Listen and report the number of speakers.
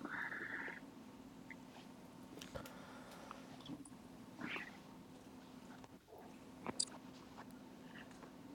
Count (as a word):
zero